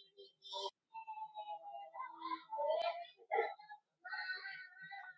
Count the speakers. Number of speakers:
0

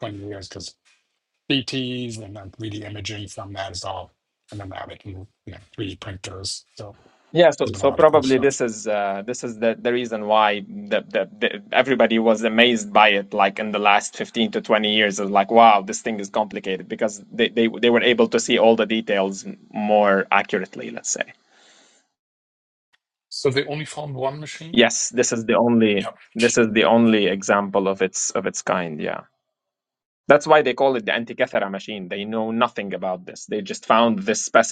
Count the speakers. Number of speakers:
3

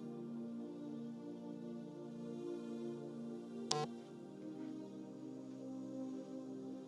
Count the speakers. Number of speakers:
0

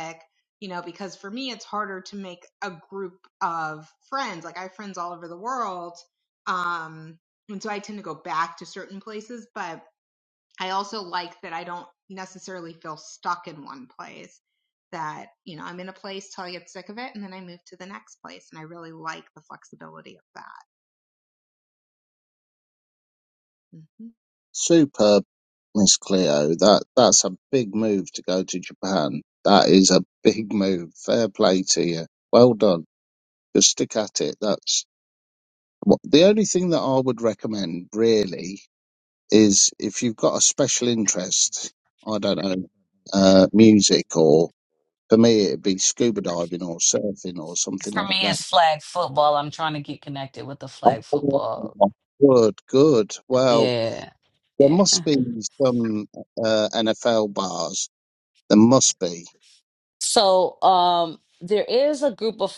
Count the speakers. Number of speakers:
3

